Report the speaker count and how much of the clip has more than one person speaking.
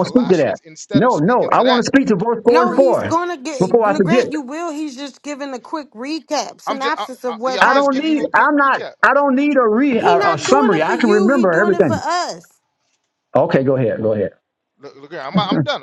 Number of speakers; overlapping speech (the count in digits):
3, about 45%